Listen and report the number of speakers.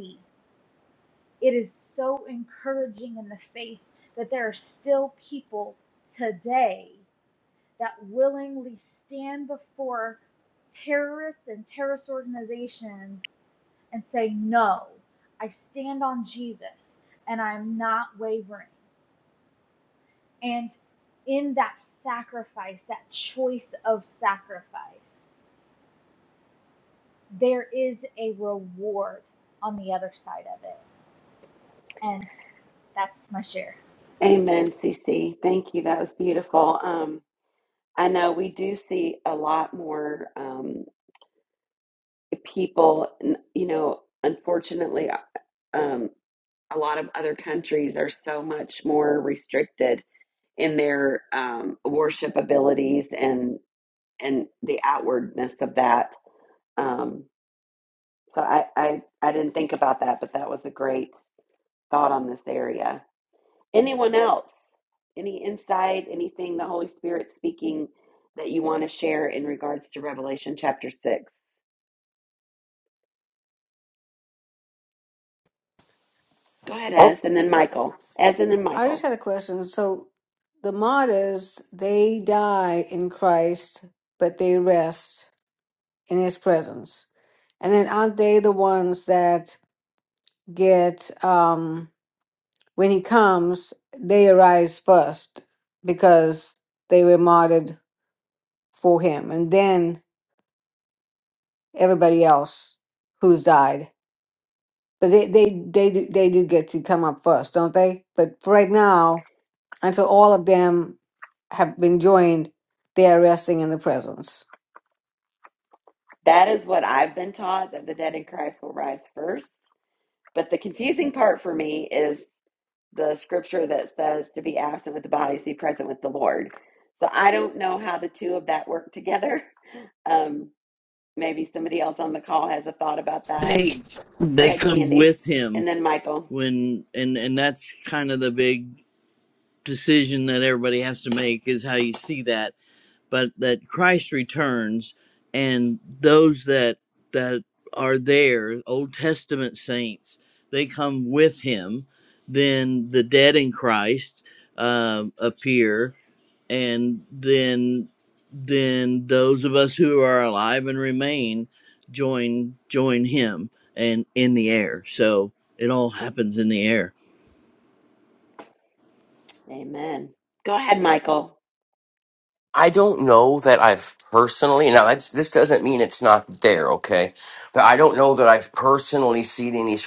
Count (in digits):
5